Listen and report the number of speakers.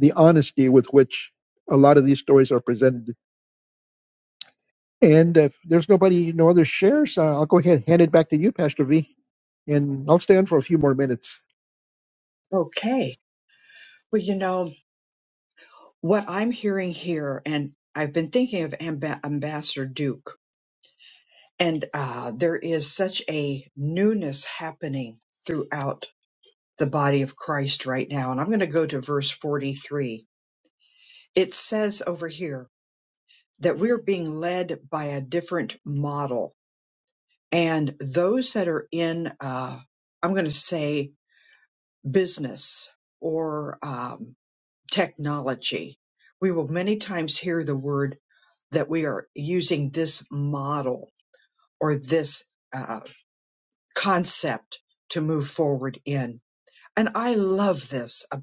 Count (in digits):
2